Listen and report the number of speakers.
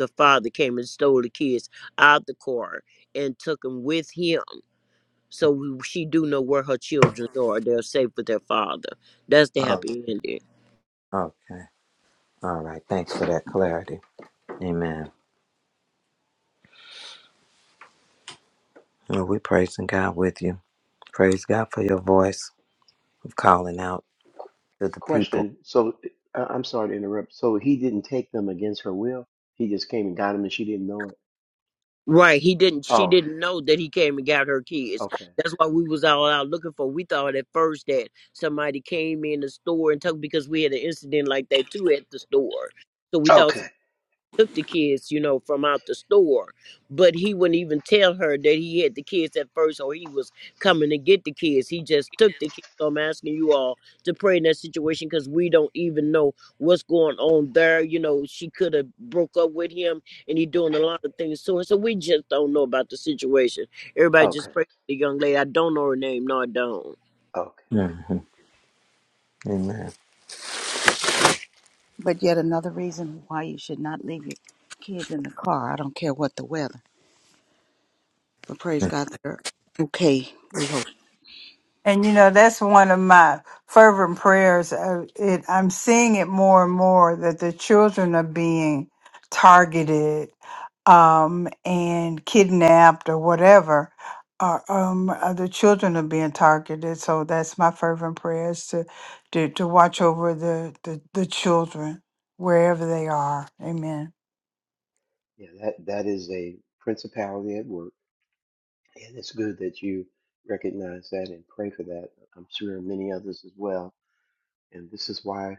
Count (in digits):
5